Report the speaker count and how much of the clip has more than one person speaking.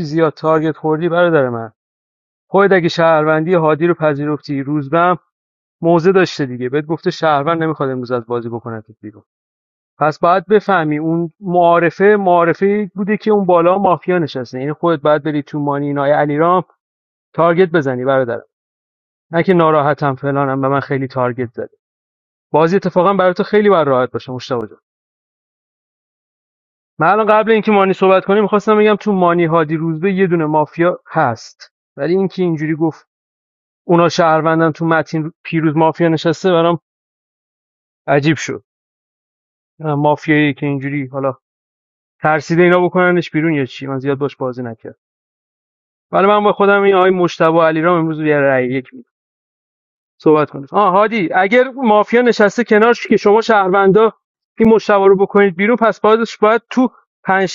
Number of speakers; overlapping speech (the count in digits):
1, no overlap